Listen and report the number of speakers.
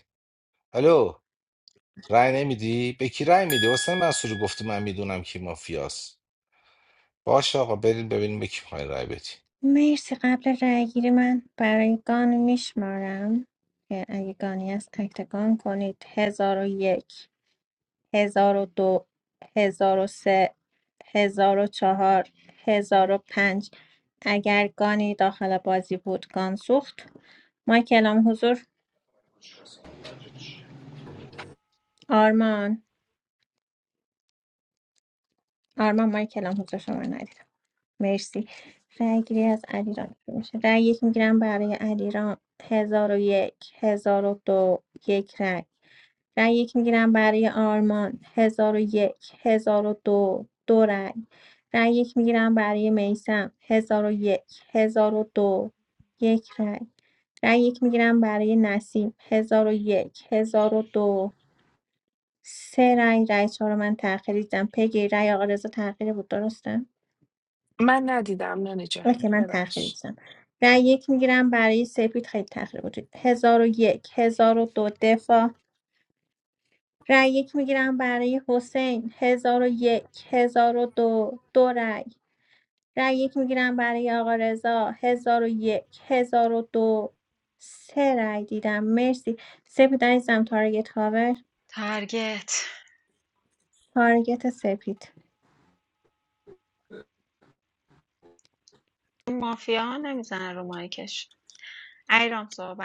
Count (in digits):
4